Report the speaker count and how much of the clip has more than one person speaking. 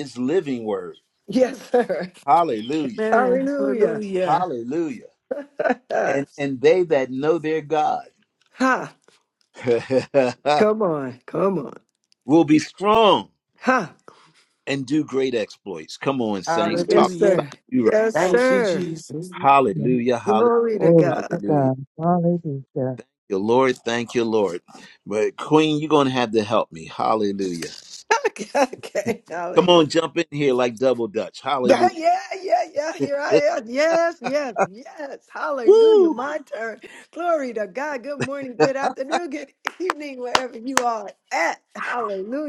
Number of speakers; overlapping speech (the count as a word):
four, about 12%